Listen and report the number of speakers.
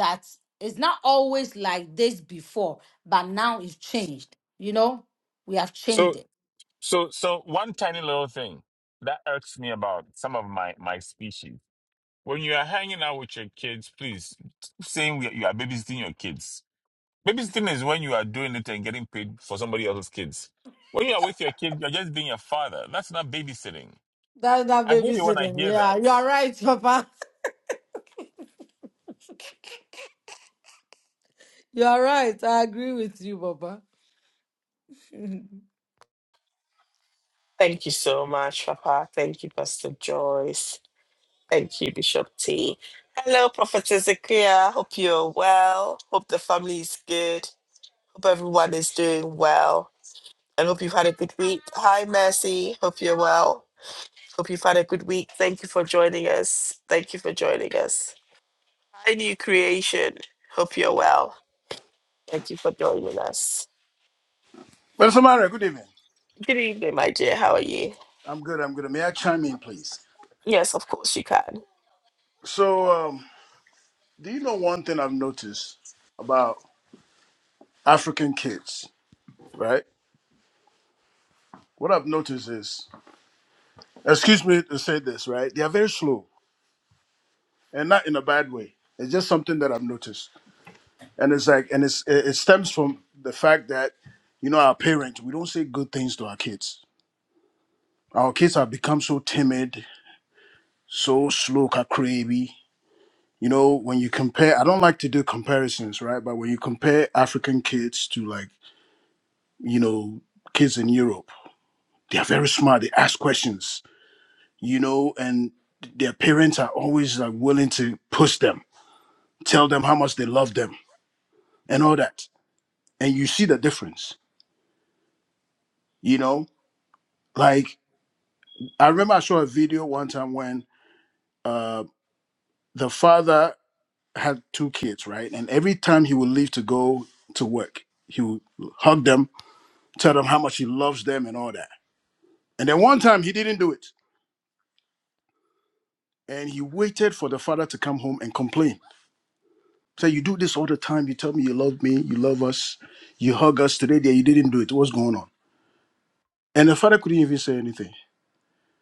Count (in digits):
4